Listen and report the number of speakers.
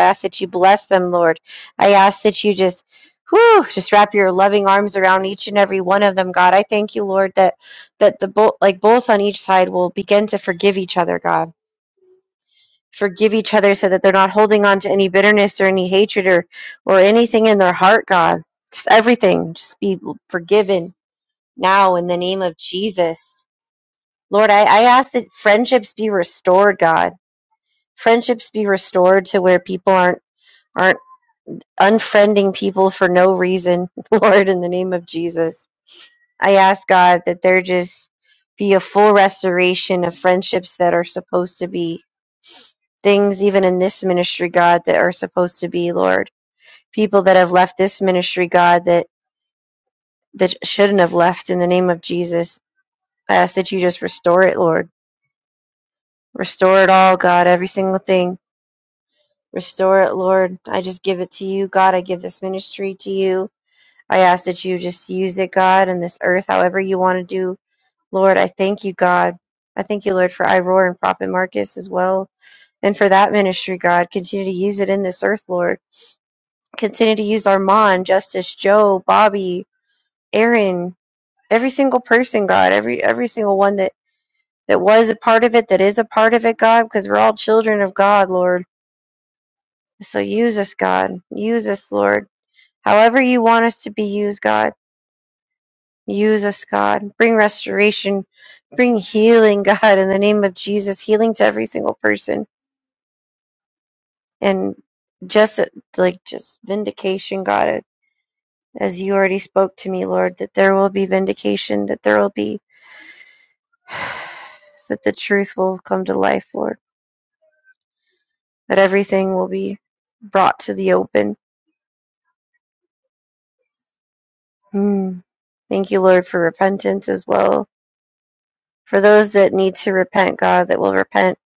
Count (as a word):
one